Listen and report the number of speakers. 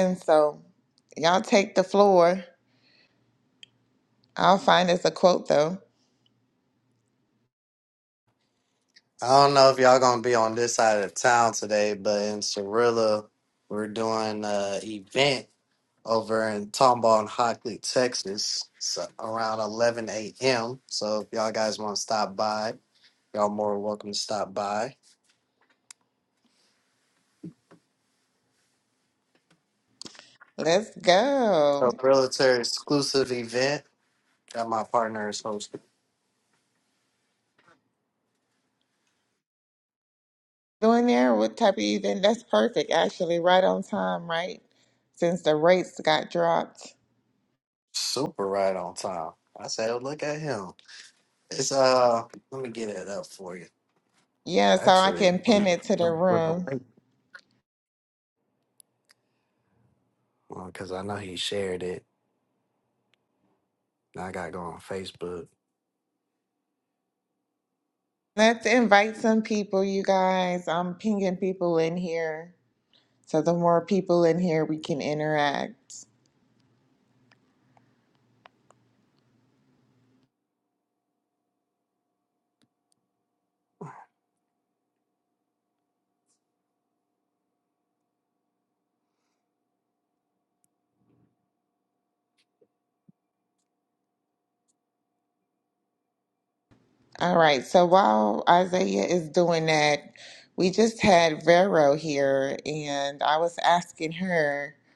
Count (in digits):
2